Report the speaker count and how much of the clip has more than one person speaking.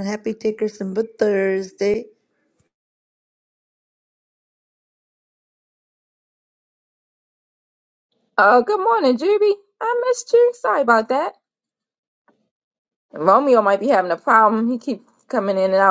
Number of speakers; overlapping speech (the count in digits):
2, no overlap